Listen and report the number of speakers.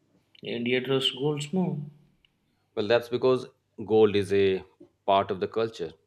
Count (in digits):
2